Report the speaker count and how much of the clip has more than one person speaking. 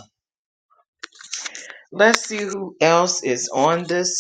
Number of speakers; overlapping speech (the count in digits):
1, no overlap